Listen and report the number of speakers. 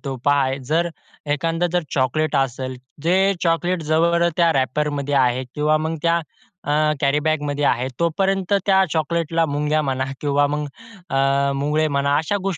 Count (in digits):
1